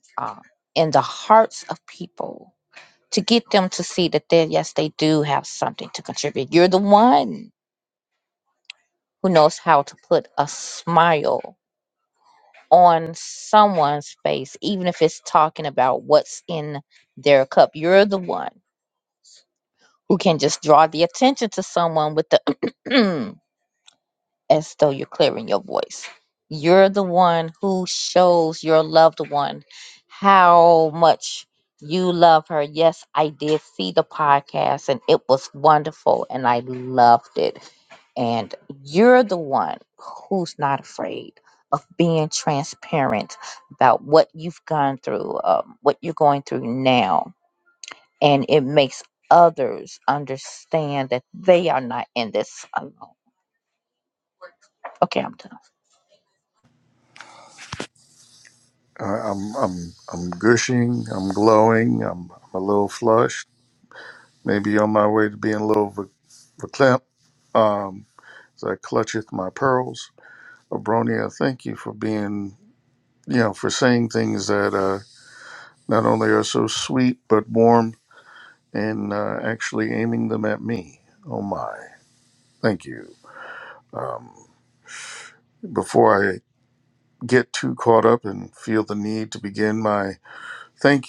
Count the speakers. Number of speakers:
two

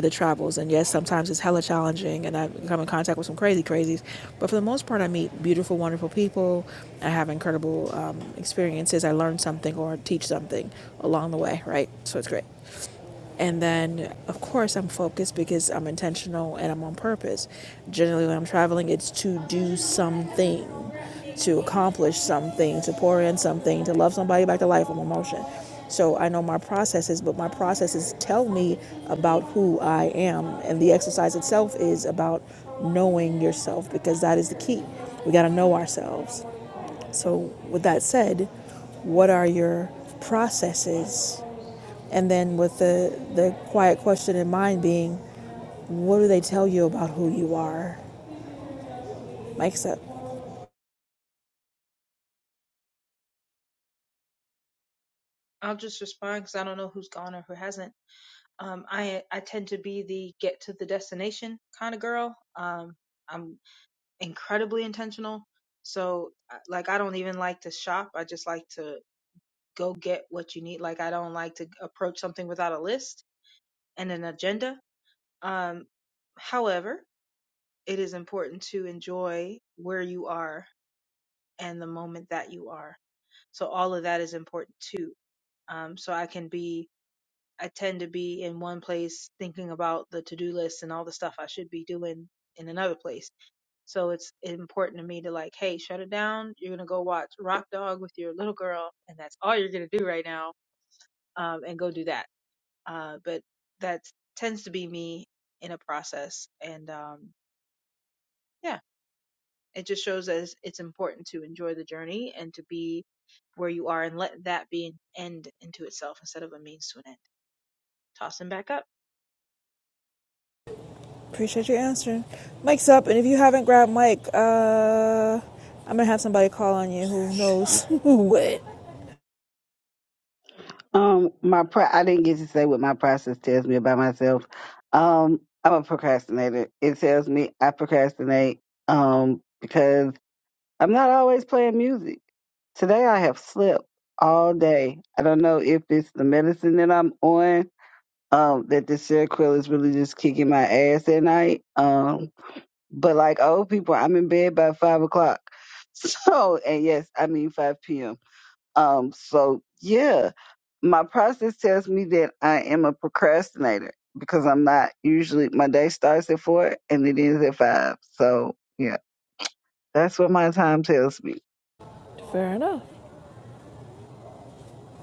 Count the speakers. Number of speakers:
three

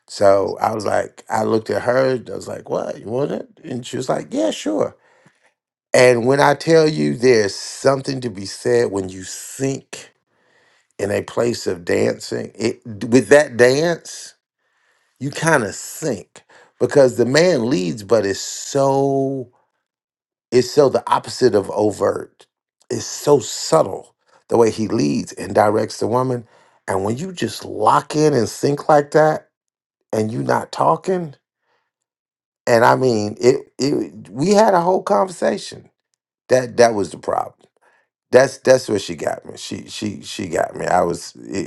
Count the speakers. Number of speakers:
one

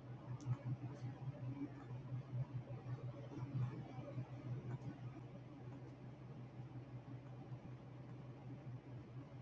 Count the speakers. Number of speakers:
zero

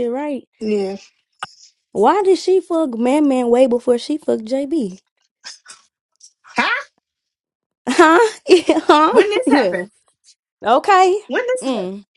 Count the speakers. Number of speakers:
two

